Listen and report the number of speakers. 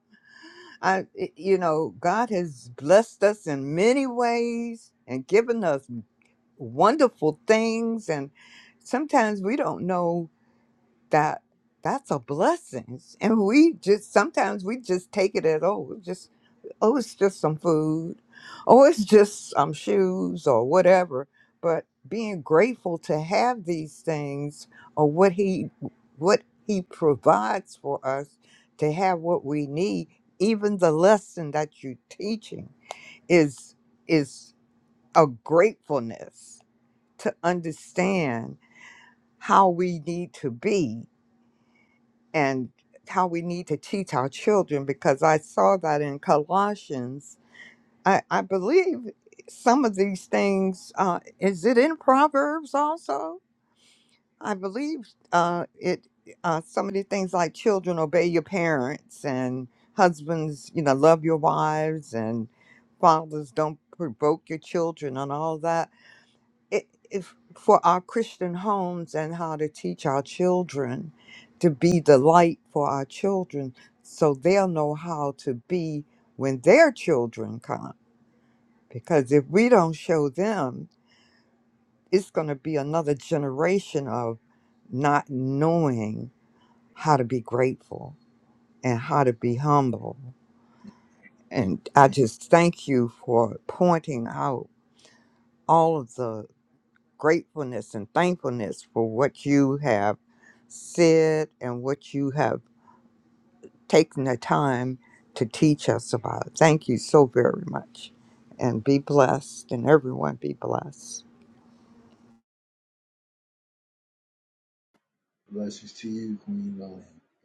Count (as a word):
two